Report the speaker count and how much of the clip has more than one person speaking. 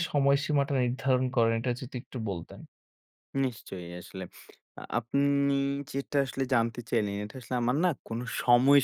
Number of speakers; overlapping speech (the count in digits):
2, no overlap